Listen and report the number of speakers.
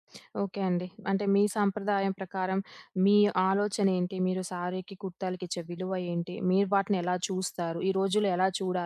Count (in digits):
1